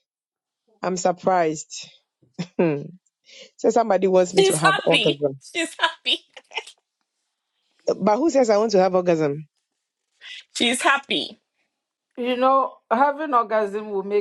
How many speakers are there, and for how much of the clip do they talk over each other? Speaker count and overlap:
3, about 5%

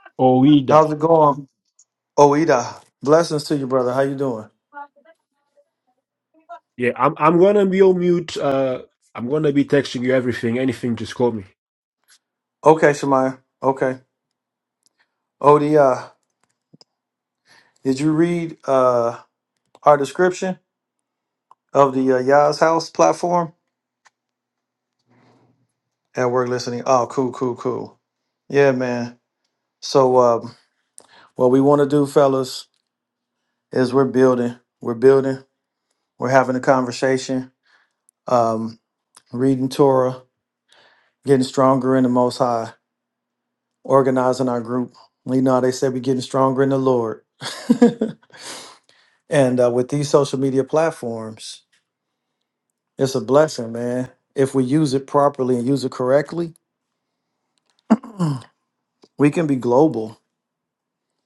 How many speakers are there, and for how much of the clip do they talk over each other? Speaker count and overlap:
2, no overlap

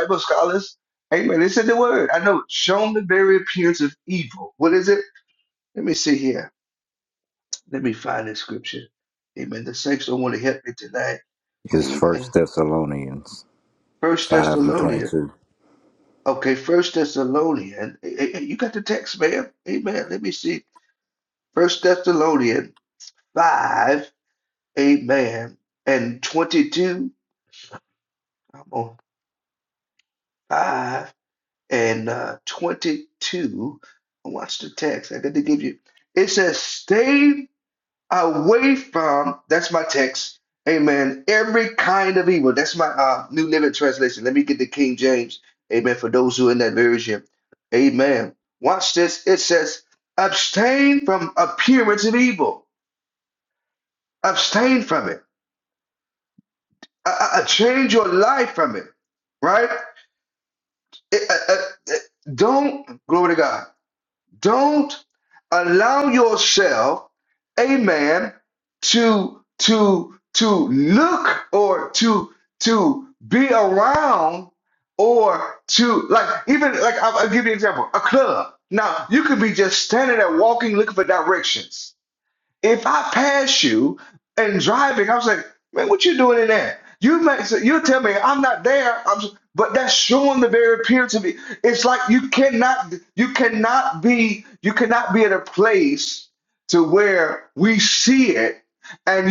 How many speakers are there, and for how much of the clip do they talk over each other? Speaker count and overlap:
2, about 1%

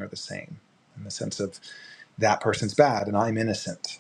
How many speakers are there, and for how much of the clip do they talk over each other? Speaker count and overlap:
1, no overlap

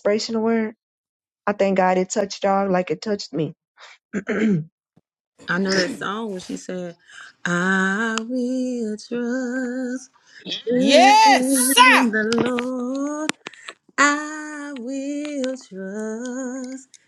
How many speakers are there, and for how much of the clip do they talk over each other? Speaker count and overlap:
3, about 3%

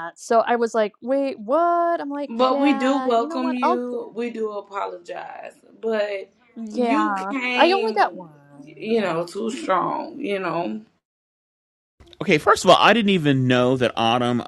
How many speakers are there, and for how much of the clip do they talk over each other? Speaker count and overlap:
3, about 21%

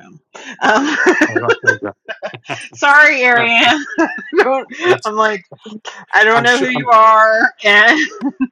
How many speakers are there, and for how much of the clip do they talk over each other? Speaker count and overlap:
2, about 10%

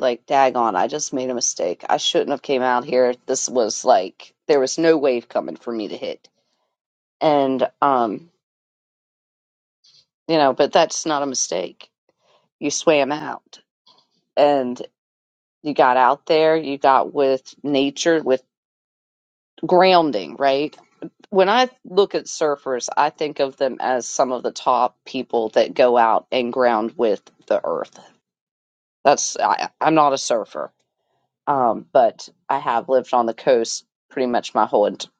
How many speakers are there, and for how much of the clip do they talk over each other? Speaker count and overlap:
1, no overlap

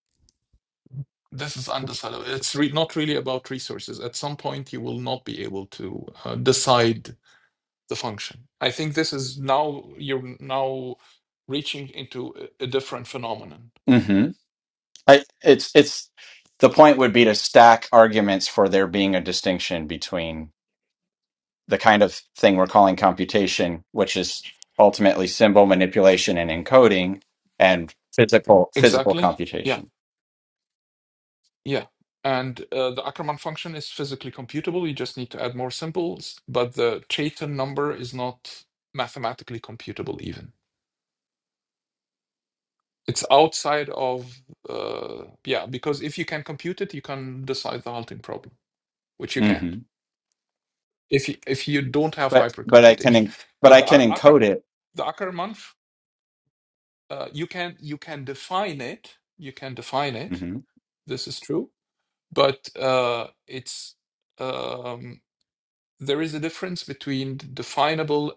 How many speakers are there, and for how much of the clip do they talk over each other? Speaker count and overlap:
2, about 5%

